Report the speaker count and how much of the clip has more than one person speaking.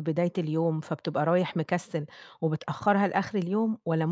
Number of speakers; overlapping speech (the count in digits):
1, no overlap